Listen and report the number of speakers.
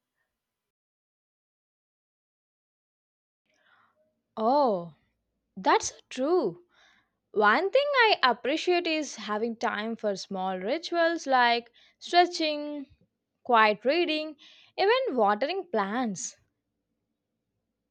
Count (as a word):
one